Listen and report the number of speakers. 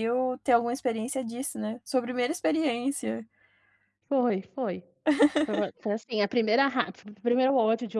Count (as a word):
two